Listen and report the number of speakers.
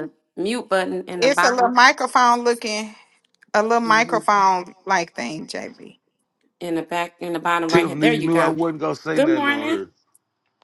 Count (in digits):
3